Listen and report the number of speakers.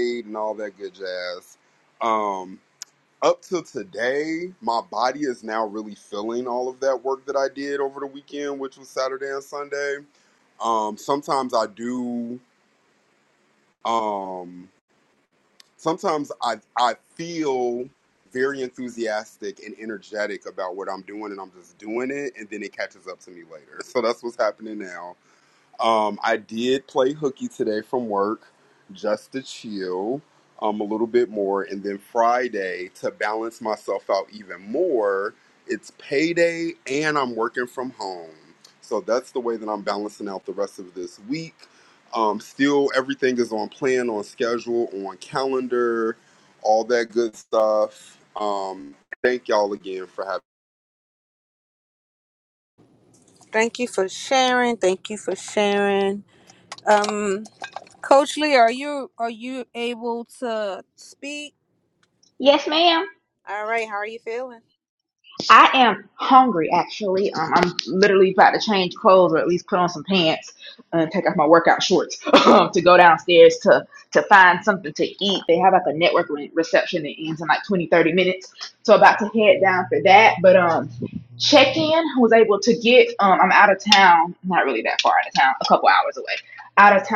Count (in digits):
3